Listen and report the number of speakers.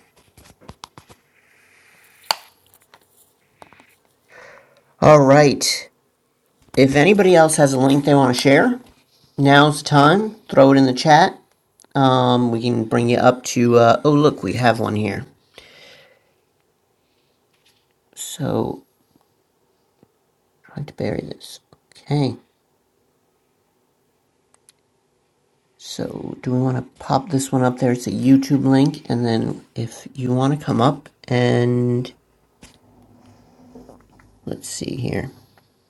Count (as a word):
one